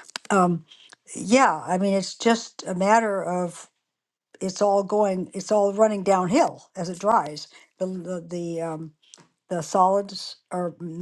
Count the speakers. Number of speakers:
1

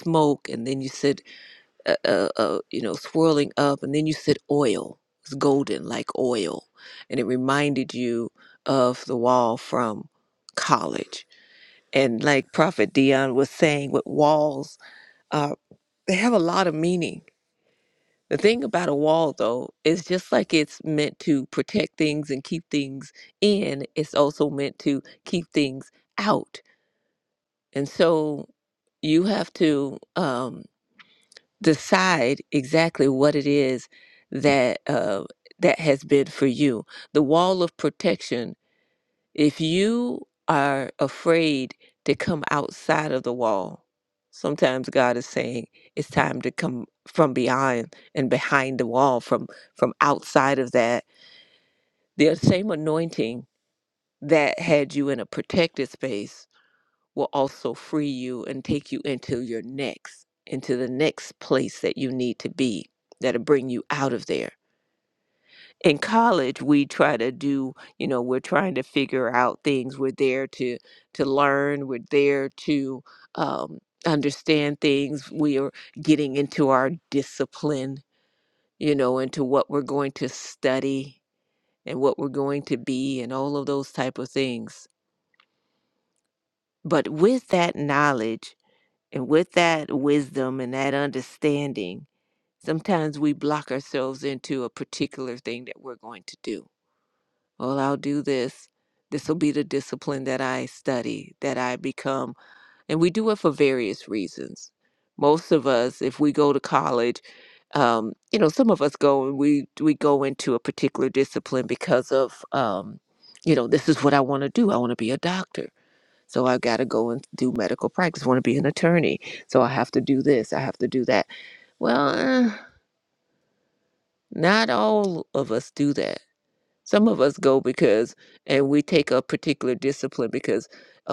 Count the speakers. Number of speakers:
1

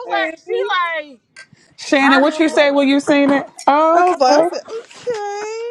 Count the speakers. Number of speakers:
3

